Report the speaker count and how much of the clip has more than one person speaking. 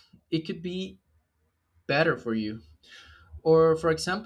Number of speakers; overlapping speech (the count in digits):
1, no overlap